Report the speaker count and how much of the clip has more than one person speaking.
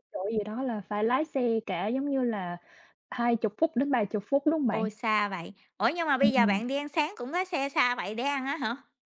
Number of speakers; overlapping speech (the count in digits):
2, about 7%